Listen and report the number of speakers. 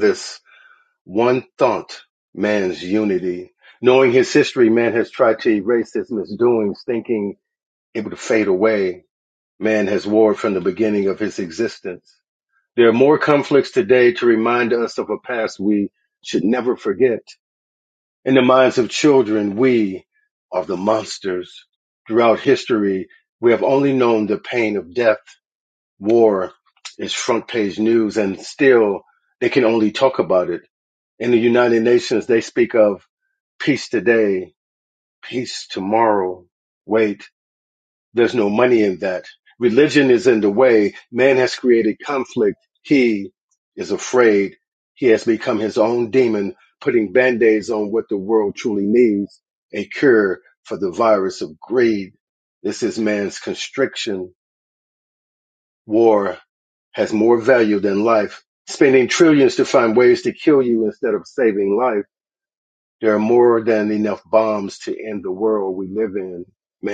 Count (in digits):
1